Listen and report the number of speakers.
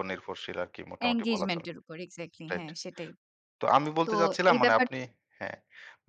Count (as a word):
two